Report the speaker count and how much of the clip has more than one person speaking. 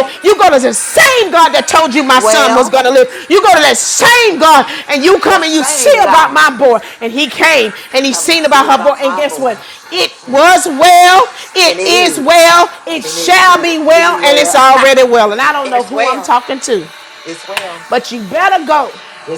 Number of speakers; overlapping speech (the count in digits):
2, about 30%